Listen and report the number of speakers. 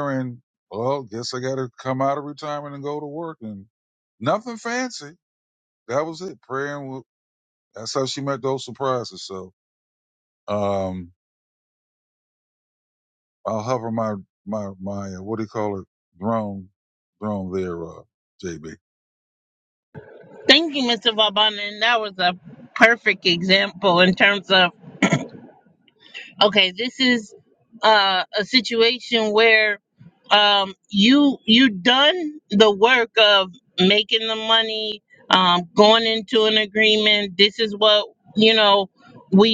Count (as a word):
two